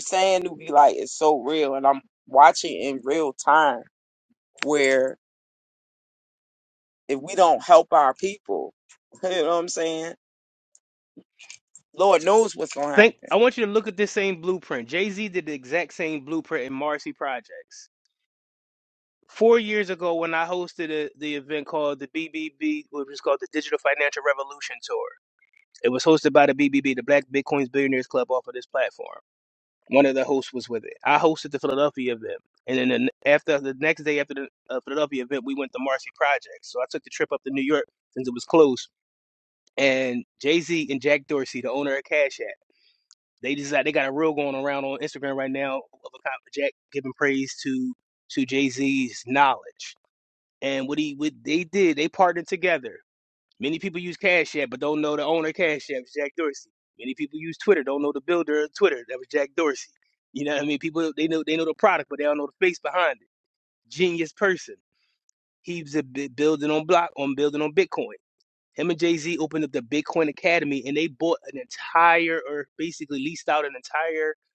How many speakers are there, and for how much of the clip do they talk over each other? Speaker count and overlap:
2, under 1%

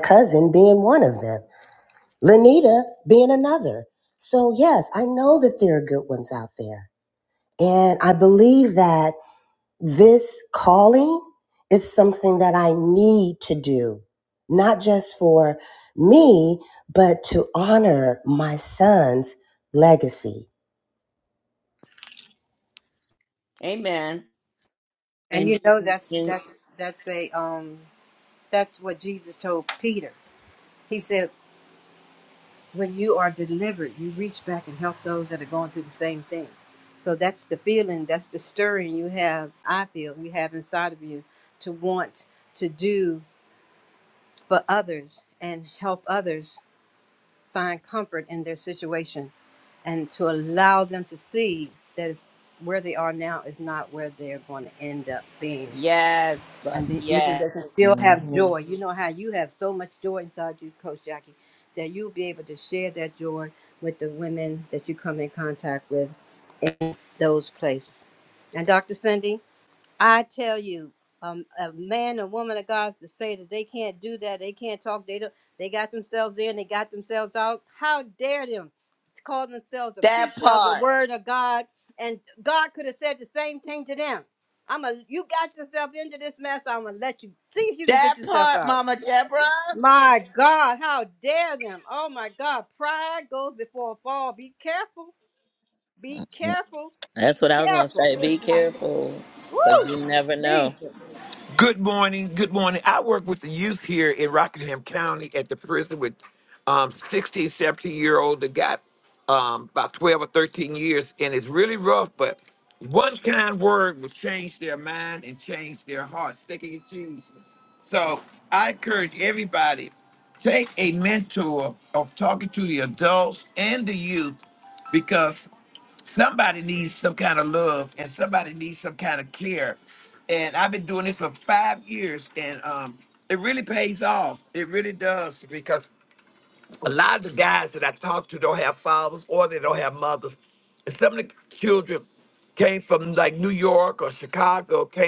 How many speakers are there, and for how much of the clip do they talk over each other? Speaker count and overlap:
5, about 4%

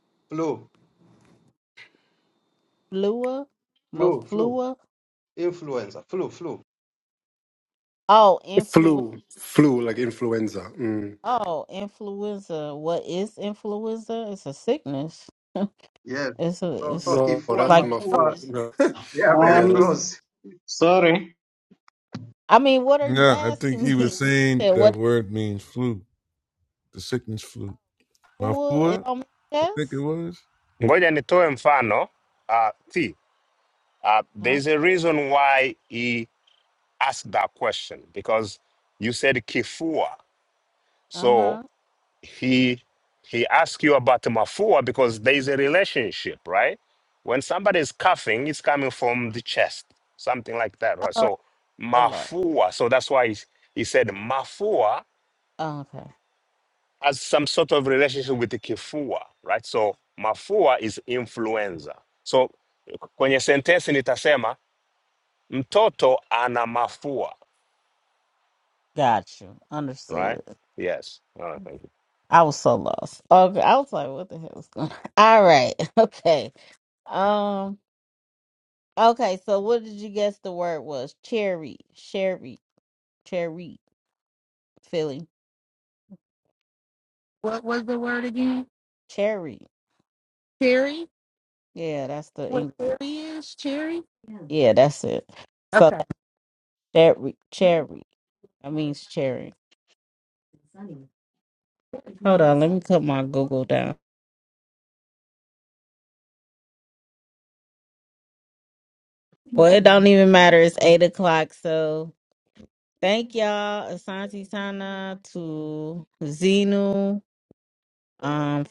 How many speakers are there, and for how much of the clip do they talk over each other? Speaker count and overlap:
7, about 6%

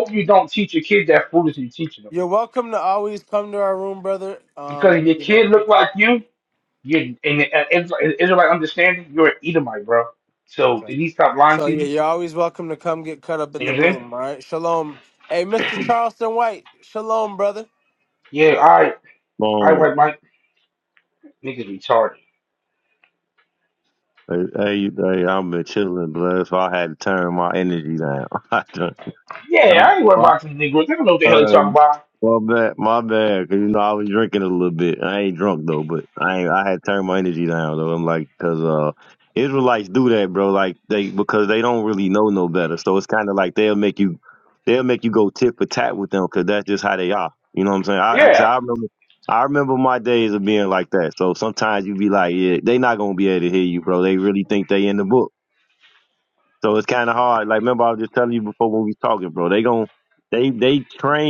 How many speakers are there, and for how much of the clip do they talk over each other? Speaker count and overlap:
3, about 5%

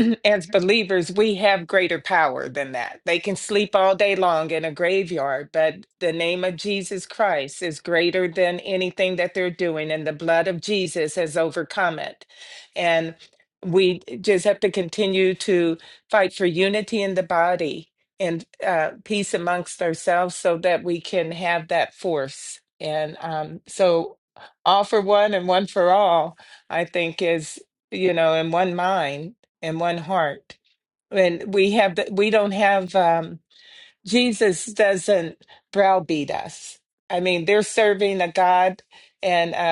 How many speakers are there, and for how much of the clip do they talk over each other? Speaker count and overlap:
1, no overlap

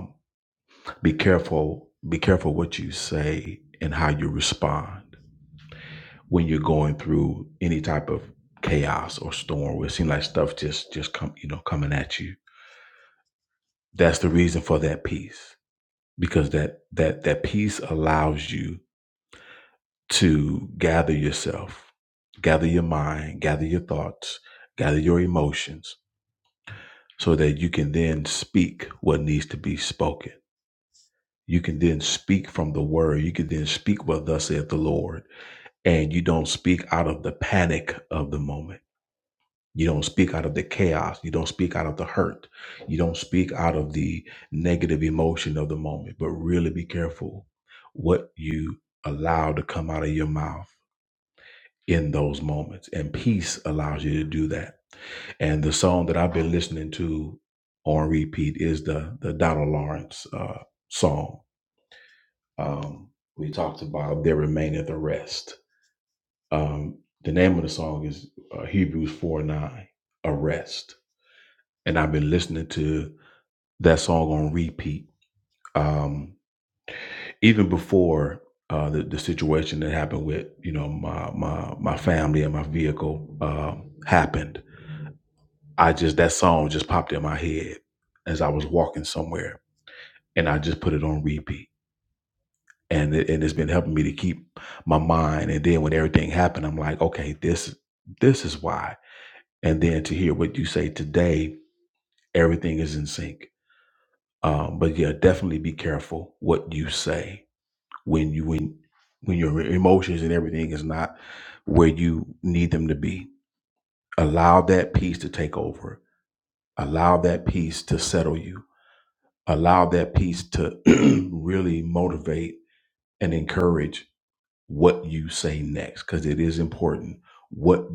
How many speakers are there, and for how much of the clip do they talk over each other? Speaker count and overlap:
1, no overlap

